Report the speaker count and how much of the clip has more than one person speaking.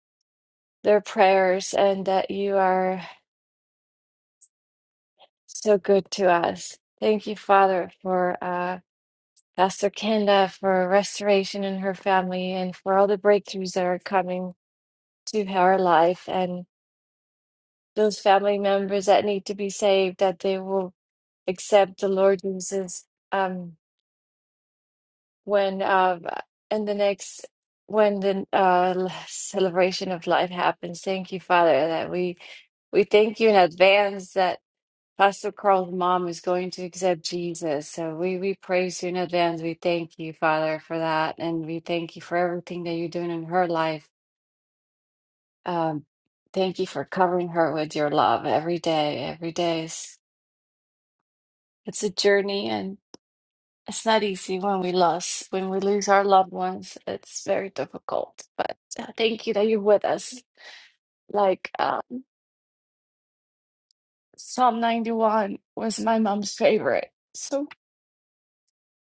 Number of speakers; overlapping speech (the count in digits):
1, no overlap